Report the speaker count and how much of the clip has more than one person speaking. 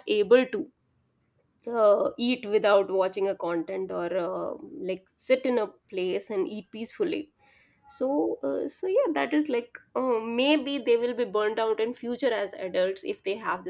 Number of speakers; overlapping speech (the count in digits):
1, no overlap